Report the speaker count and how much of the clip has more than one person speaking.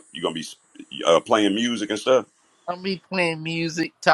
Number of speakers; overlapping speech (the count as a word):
two, no overlap